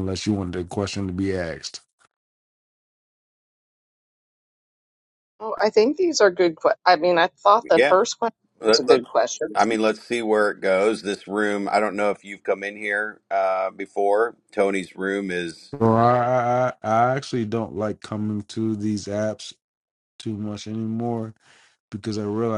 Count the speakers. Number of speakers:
3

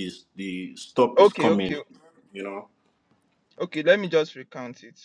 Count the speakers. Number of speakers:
2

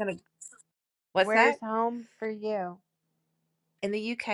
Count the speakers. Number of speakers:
2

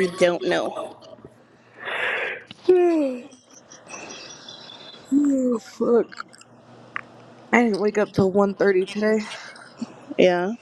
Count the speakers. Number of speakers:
2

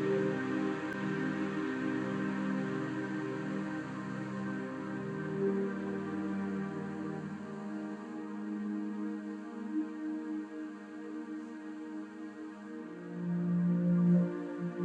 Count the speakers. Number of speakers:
0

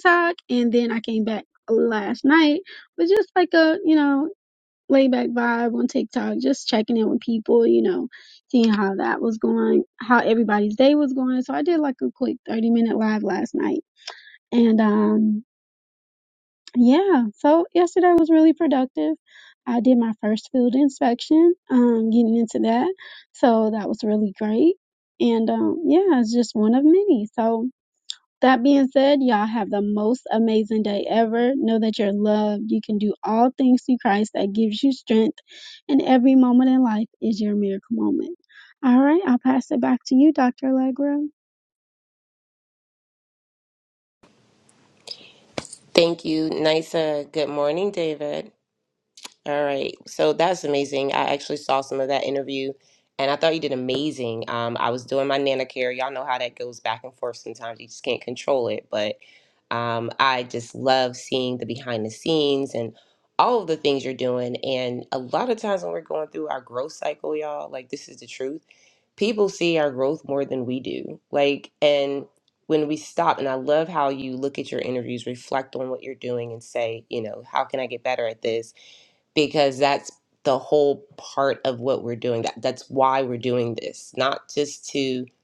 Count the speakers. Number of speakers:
2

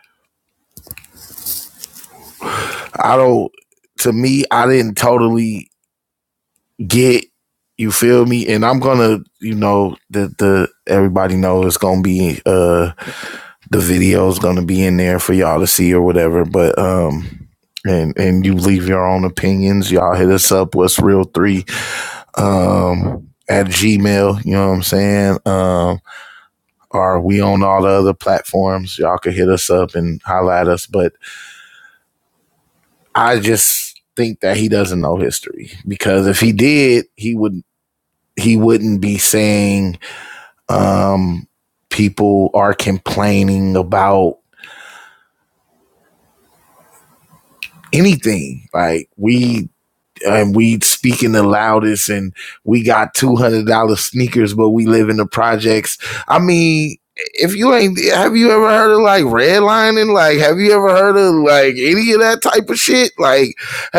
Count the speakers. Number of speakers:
1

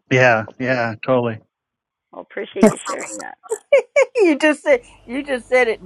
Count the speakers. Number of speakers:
3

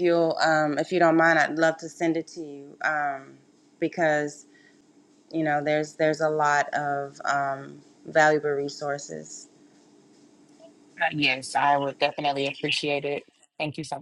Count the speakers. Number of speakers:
2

